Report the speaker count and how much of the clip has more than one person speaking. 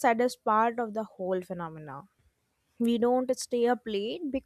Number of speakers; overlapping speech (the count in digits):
1, no overlap